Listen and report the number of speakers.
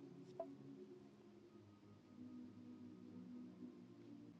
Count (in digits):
0